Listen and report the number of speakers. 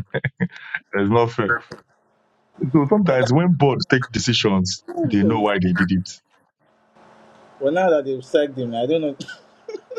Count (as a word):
two